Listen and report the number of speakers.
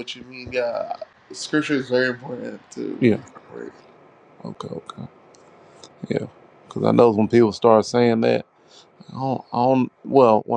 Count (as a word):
two